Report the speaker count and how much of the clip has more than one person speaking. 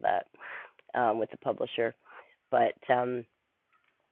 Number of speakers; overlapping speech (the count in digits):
1, no overlap